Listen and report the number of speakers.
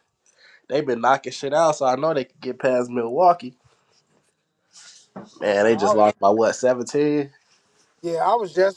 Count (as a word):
two